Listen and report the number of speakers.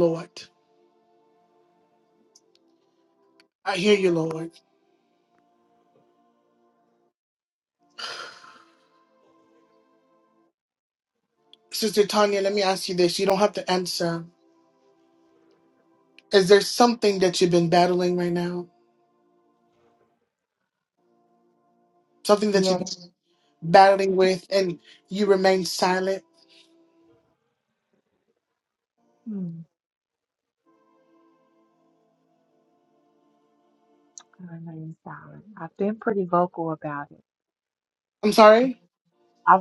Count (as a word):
two